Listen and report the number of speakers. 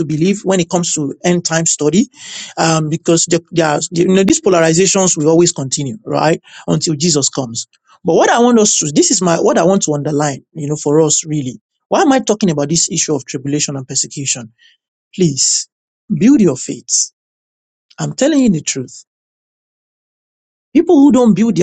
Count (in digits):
1